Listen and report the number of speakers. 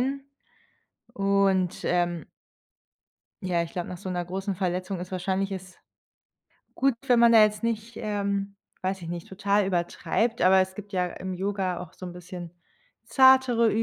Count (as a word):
one